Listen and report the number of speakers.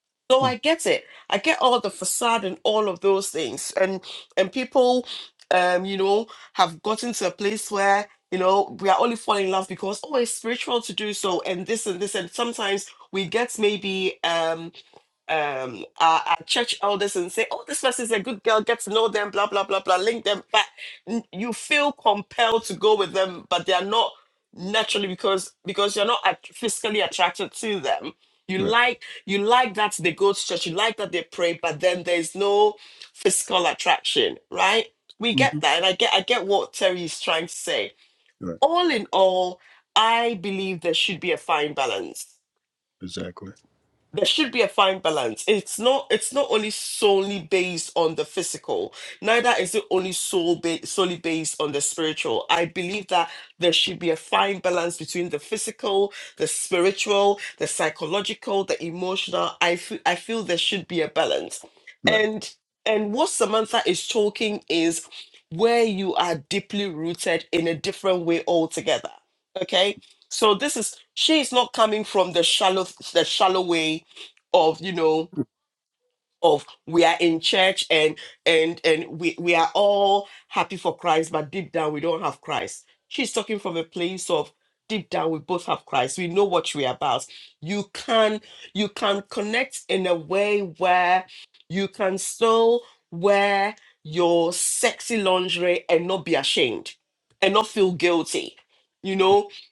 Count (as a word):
two